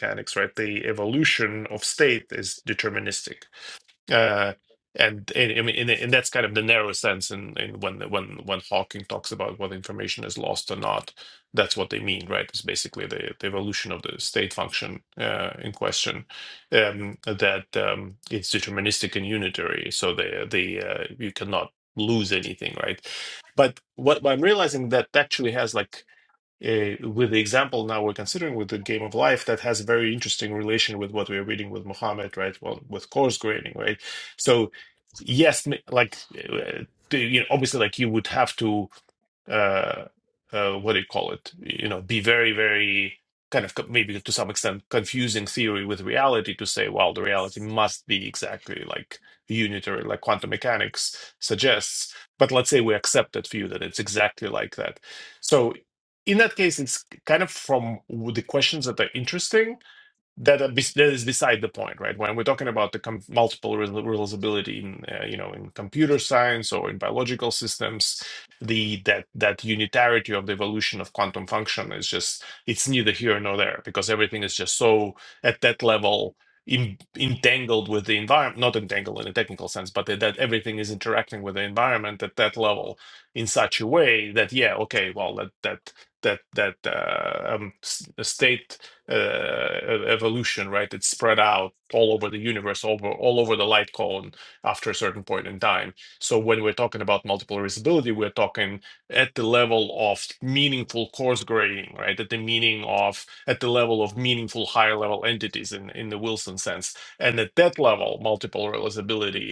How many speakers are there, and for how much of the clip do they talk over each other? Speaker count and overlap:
1, no overlap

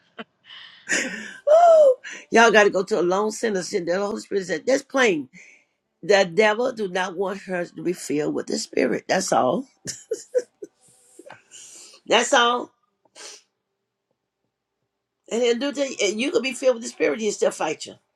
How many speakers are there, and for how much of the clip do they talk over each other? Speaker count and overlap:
1, no overlap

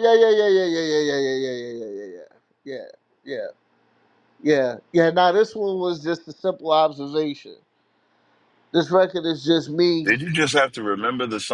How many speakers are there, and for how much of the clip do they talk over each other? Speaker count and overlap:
2, about 1%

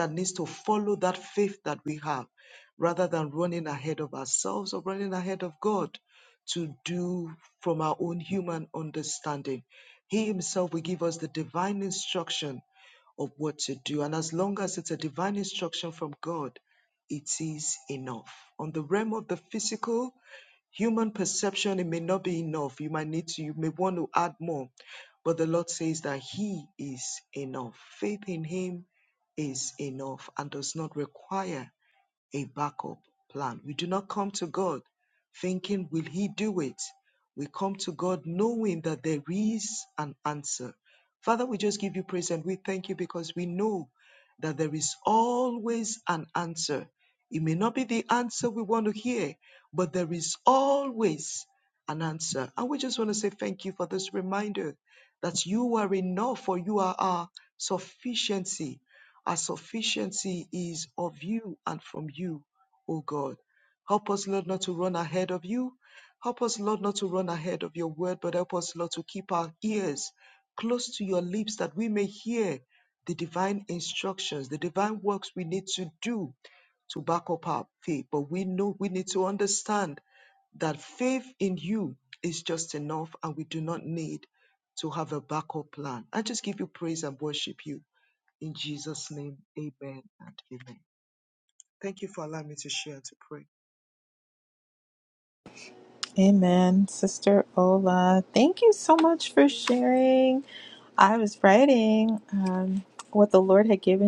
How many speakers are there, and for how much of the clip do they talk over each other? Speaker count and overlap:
2, no overlap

